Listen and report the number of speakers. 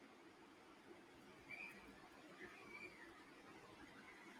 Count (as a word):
zero